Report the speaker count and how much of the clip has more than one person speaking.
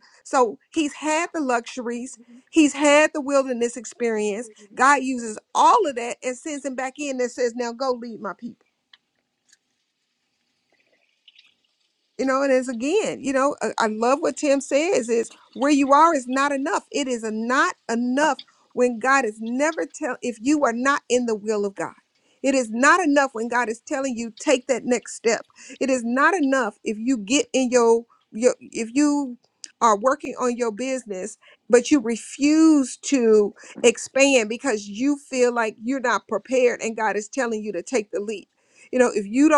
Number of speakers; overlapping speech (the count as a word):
one, no overlap